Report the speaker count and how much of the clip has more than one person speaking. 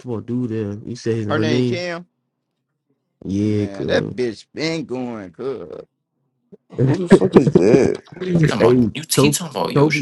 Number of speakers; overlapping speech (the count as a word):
four, about 22%